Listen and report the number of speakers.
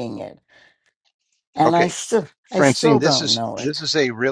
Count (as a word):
two